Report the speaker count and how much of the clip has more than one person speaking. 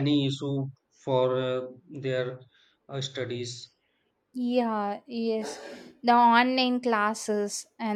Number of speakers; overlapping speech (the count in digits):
2, no overlap